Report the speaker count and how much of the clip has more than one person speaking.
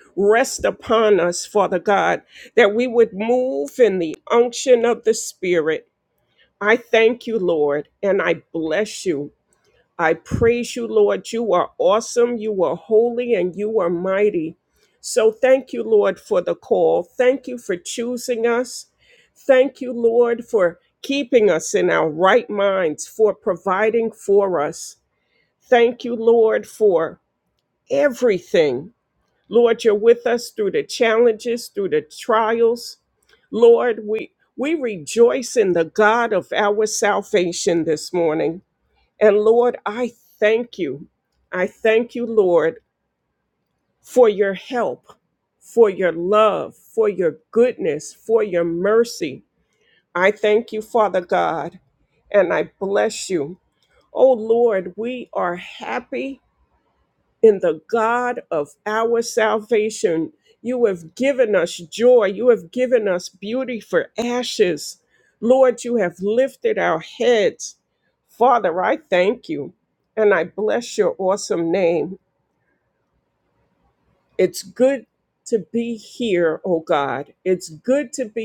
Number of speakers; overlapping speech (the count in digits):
1, no overlap